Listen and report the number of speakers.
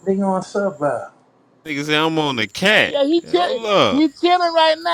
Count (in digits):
3